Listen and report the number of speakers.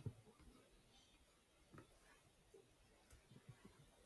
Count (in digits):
0